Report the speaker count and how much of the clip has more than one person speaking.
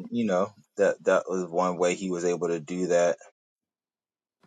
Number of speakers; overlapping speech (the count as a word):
one, no overlap